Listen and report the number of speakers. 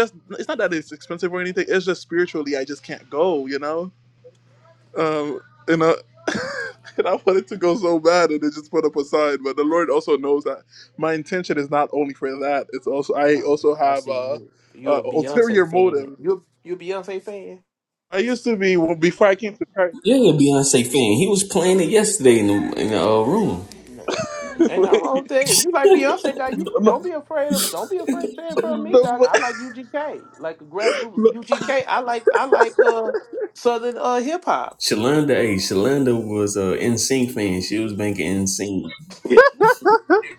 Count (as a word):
three